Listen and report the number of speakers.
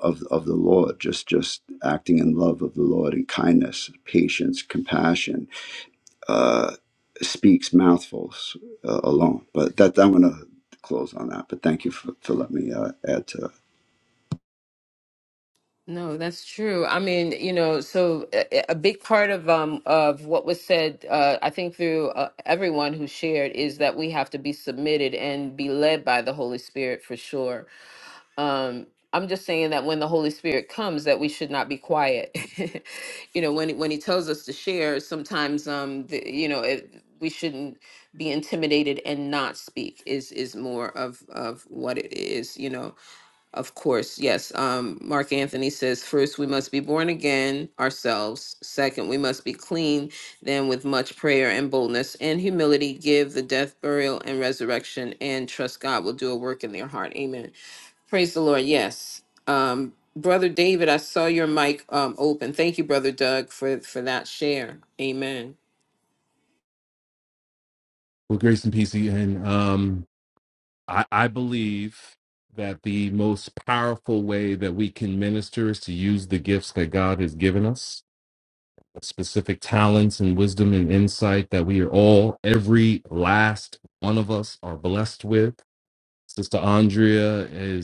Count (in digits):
3